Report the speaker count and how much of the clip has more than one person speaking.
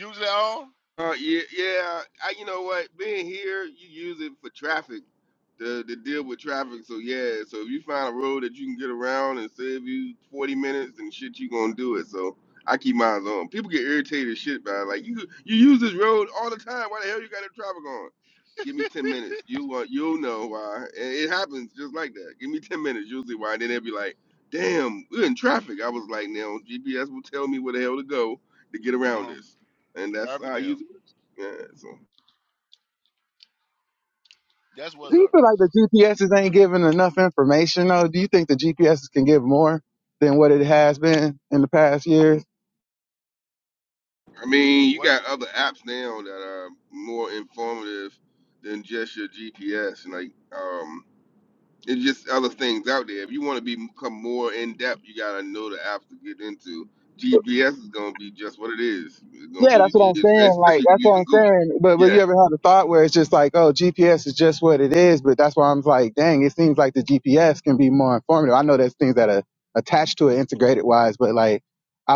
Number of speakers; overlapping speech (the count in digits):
3, about 5%